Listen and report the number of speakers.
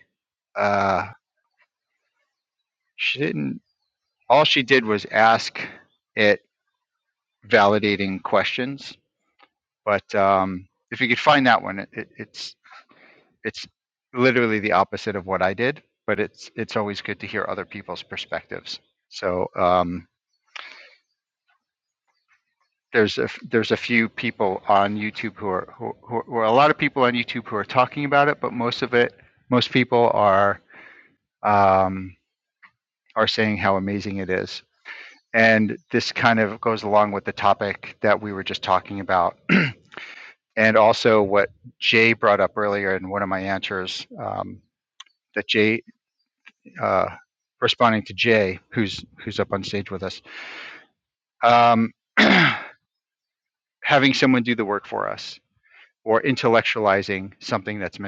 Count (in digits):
1